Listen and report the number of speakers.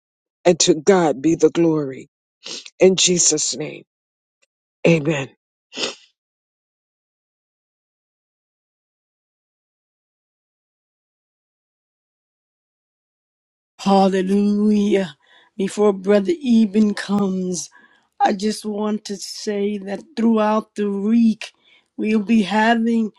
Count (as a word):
two